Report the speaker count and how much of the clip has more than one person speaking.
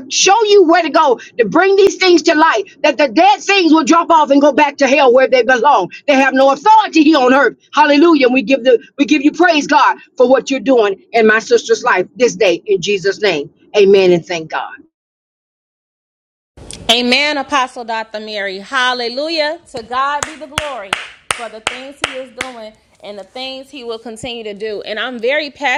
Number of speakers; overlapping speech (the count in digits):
2, no overlap